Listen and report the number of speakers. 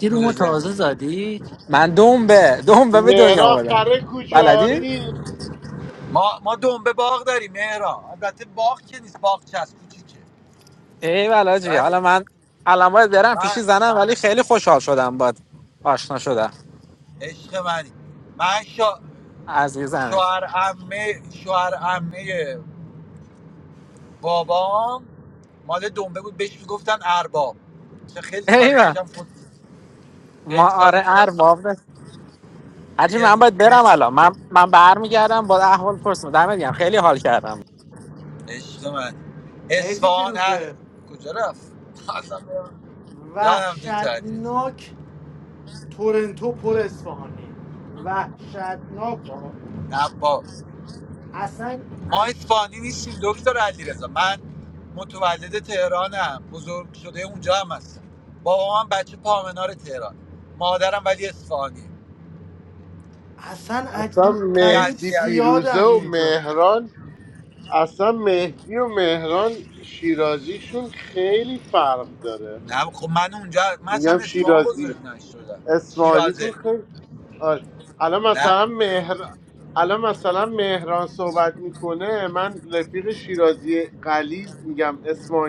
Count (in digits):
5